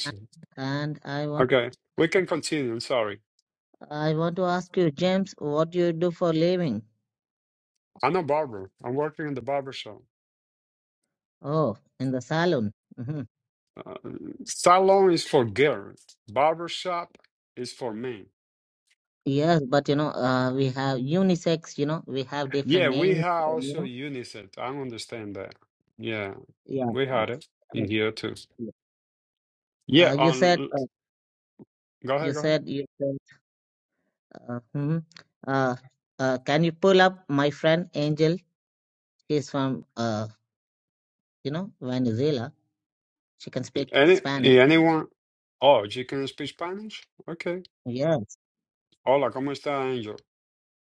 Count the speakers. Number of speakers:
2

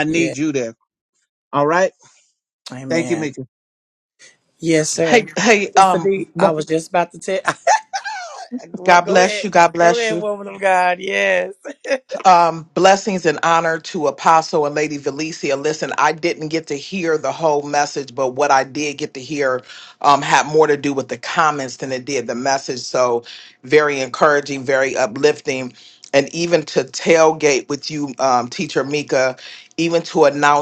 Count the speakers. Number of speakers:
3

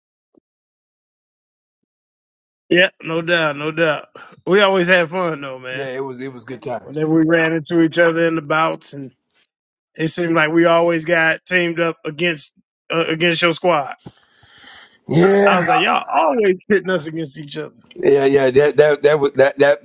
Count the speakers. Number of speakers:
2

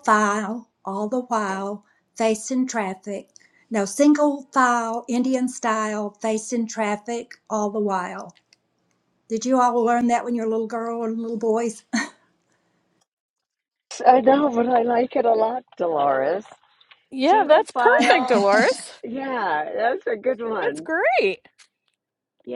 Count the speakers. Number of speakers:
3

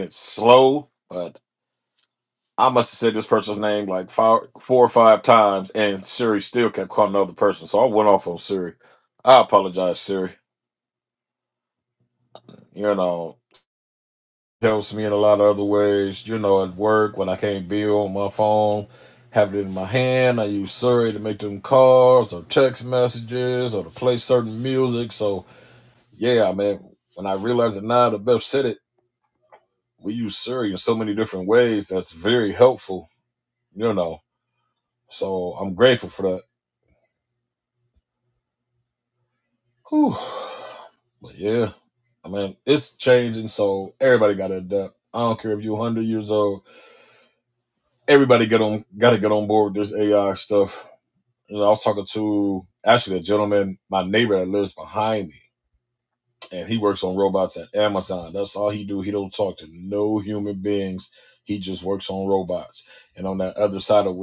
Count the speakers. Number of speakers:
1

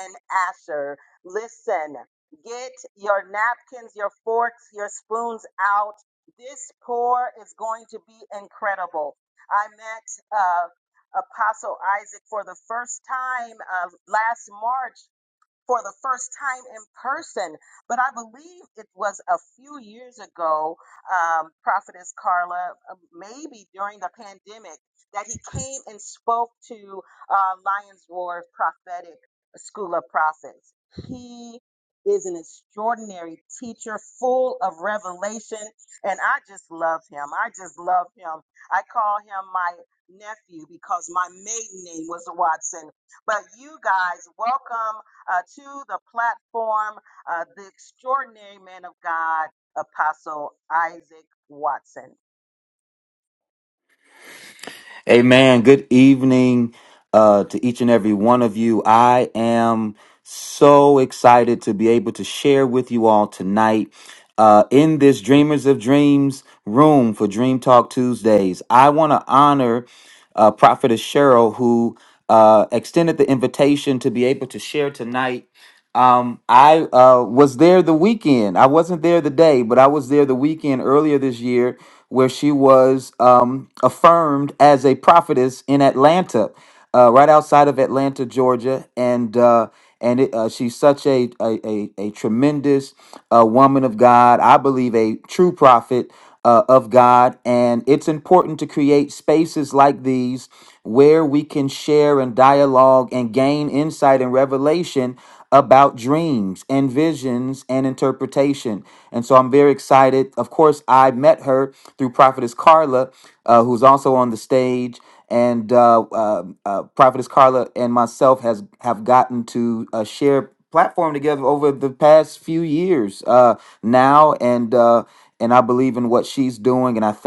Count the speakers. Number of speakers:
2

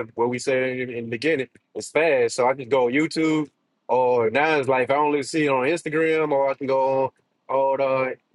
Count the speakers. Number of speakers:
1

